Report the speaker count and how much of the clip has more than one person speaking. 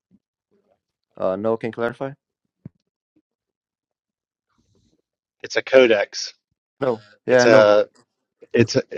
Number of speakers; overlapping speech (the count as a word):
two, about 4%